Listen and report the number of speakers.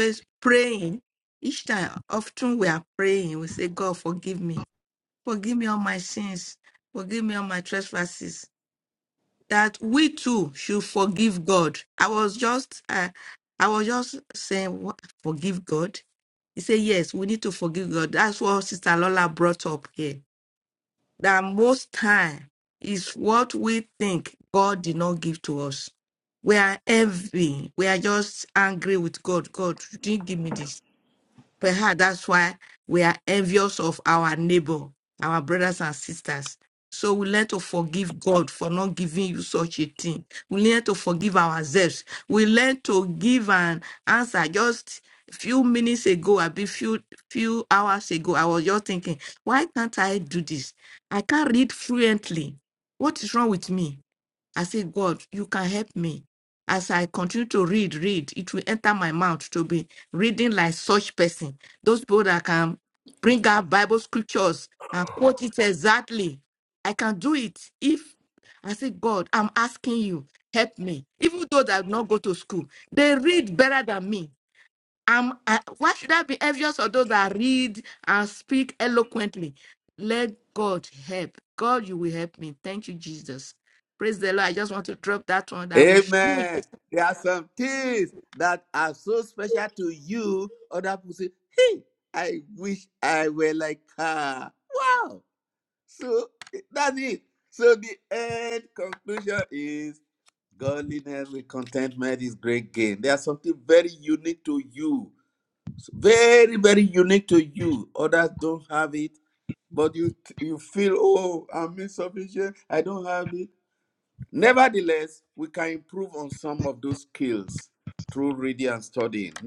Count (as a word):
two